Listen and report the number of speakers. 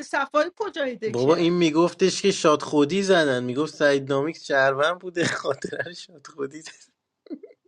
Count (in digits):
2